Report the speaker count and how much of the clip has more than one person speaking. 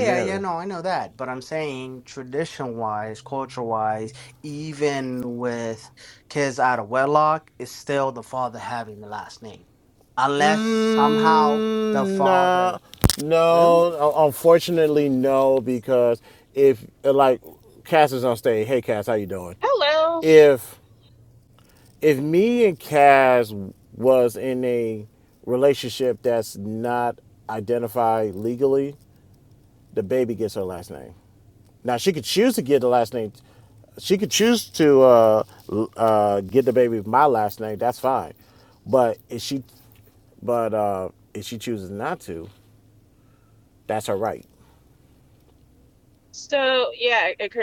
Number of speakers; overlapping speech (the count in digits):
3, about 4%